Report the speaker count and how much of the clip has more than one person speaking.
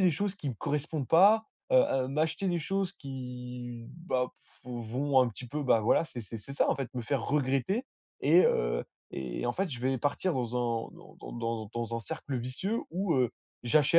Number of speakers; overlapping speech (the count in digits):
1, no overlap